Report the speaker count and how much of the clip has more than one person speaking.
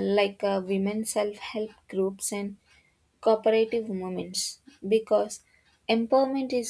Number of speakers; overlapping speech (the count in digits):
1, no overlap